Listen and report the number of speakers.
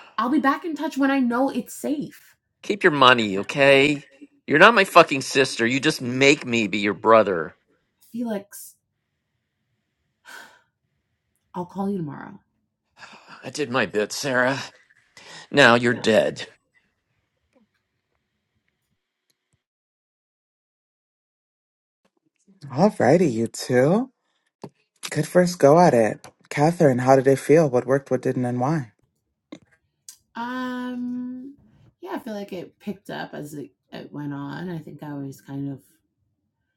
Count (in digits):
3